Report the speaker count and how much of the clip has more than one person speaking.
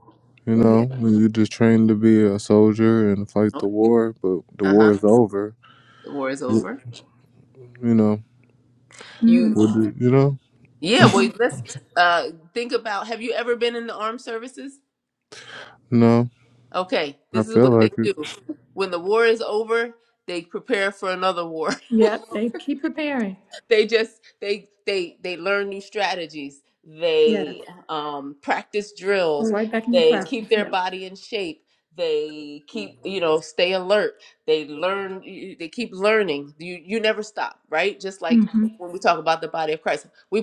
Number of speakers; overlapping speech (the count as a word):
three, about 8%